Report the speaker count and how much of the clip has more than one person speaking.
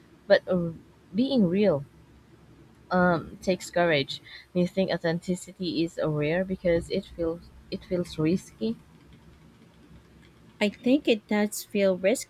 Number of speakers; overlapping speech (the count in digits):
2, no overlap